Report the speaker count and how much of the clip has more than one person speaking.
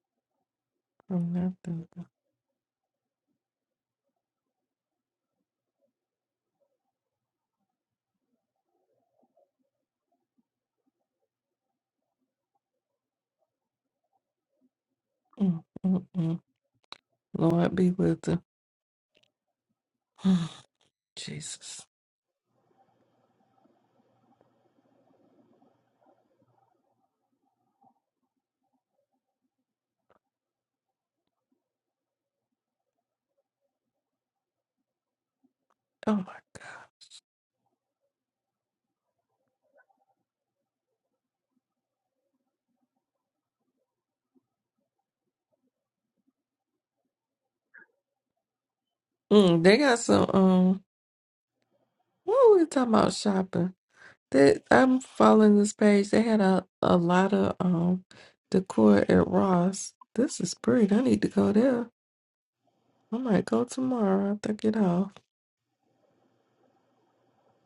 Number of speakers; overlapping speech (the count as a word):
one, no overlap